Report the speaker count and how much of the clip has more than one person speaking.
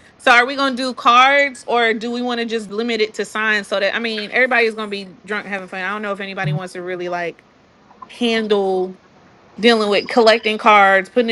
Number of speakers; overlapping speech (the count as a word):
one, no overlap